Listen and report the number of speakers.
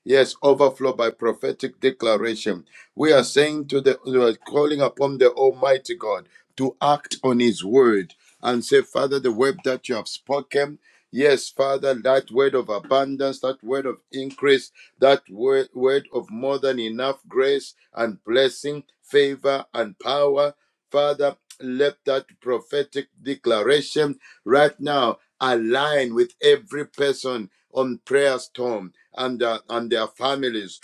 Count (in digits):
1